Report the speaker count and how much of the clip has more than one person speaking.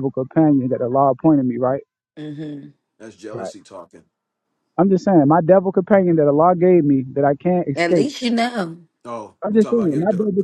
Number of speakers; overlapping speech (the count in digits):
3, about 13%